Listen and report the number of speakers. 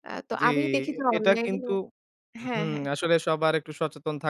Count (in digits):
2